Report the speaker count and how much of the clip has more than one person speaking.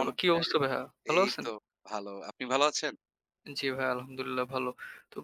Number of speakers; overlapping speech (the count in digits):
2, about 16%